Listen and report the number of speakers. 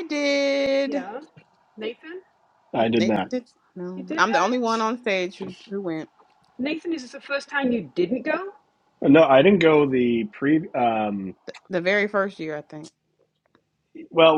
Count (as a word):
three